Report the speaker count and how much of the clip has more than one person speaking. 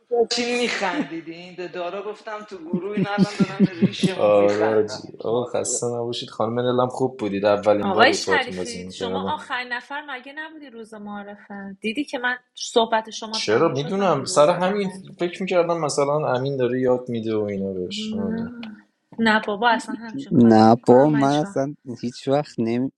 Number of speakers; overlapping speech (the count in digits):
4, about 30%